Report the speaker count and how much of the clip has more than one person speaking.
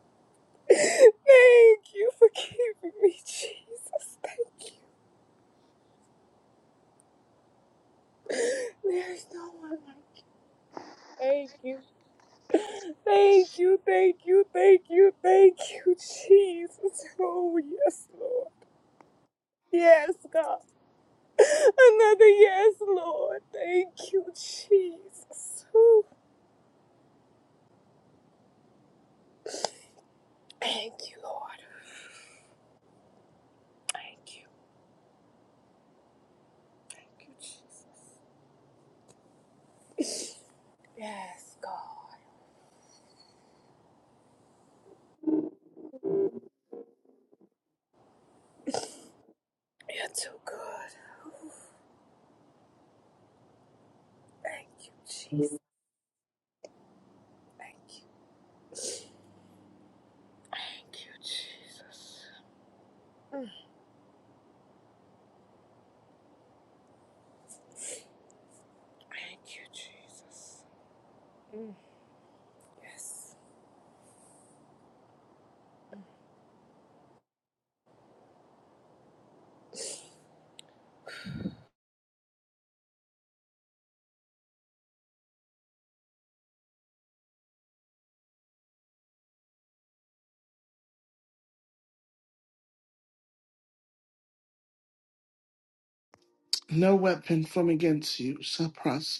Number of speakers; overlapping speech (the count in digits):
2, no overlap